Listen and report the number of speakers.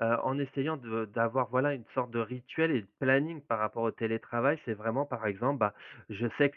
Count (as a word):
one